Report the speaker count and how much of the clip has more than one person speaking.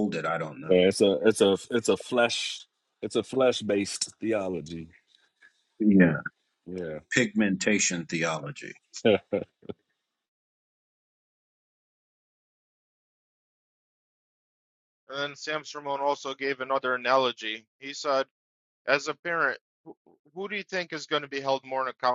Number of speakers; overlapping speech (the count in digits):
3, under 1%